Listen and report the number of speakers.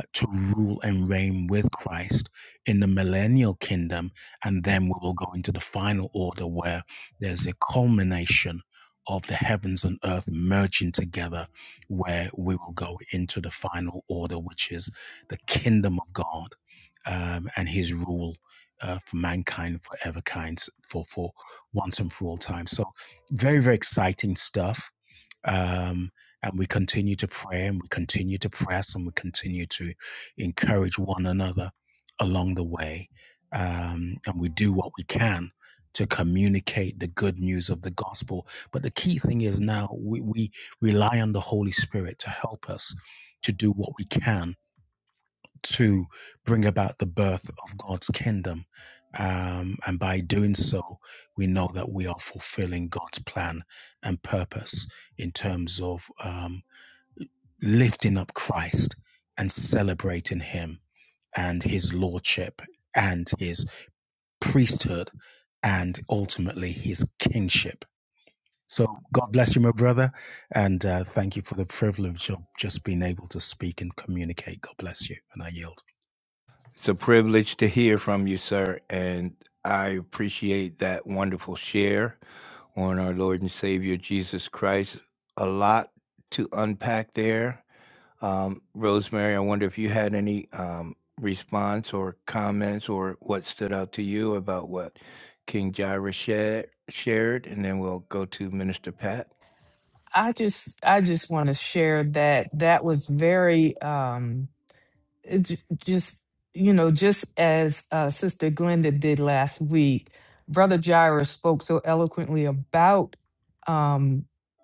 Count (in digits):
3